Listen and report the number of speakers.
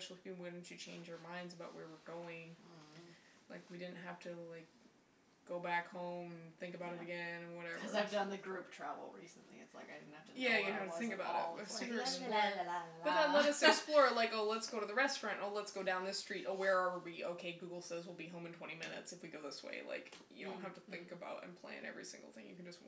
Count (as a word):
two